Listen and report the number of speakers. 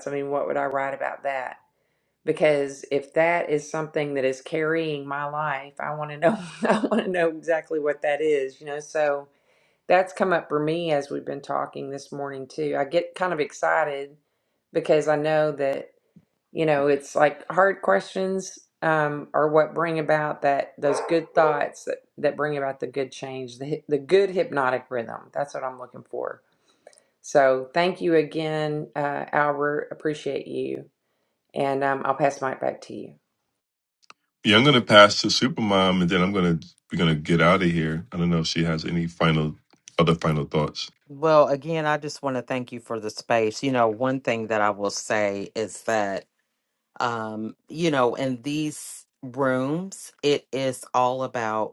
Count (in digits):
3